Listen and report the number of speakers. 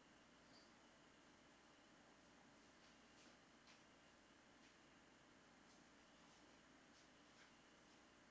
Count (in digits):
0